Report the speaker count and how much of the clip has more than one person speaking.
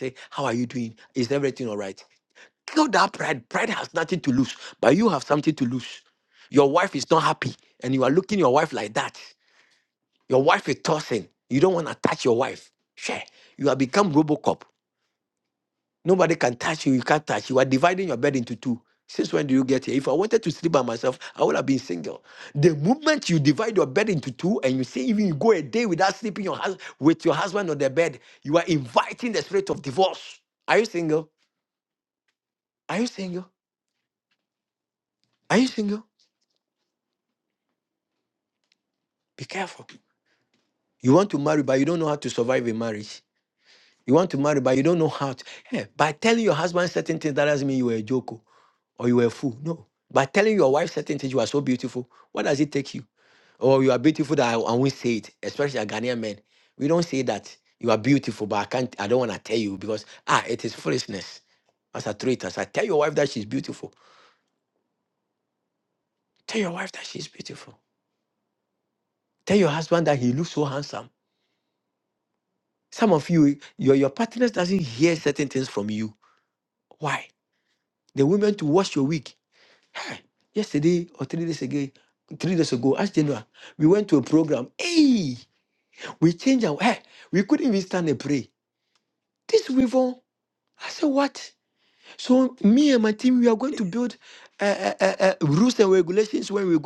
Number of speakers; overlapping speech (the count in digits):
1, no overlap